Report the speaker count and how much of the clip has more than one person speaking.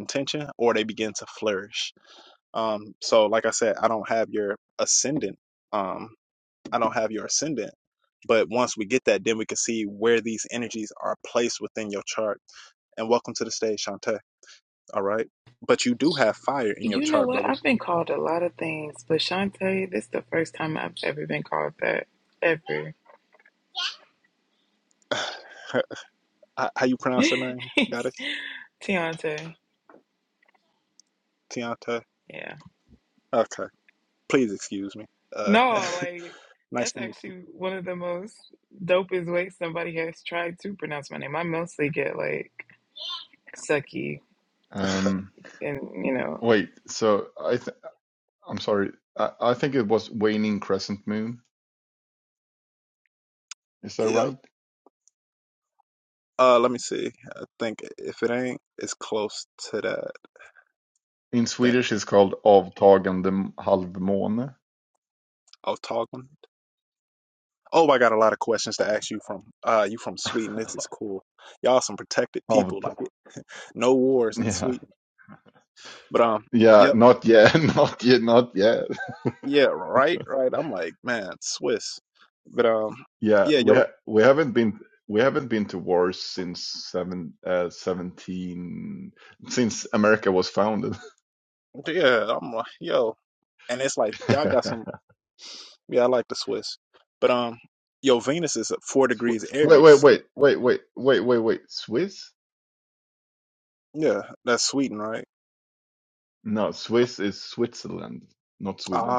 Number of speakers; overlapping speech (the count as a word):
three, about 4%